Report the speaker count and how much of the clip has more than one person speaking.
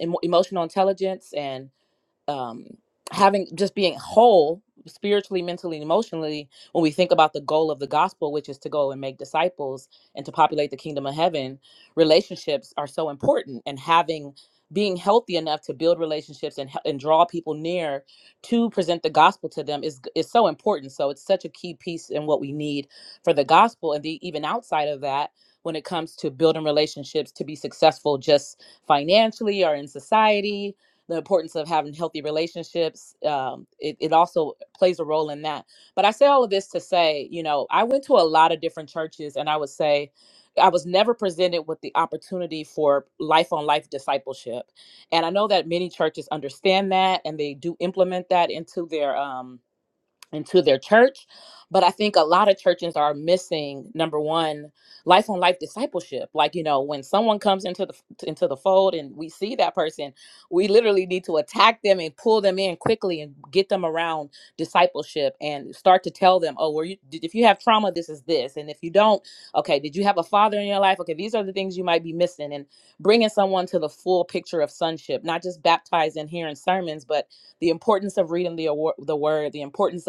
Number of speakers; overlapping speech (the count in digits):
1, no overlap